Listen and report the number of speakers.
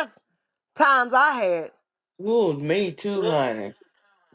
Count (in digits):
2